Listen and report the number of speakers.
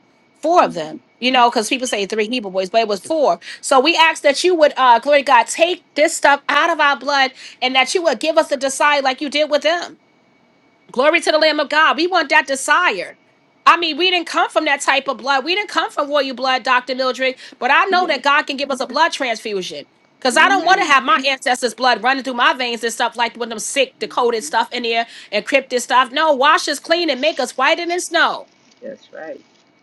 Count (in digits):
2